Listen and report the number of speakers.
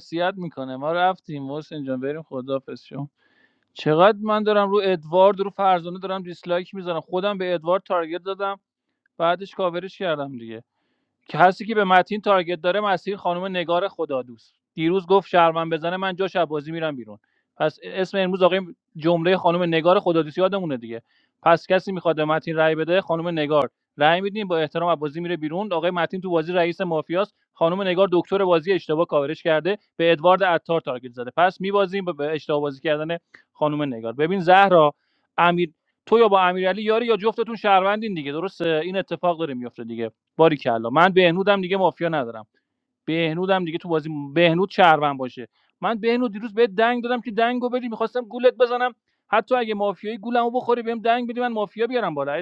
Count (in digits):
1